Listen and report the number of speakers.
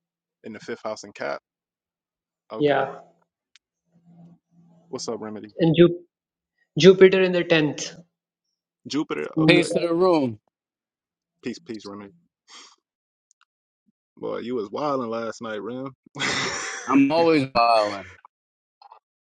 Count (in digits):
3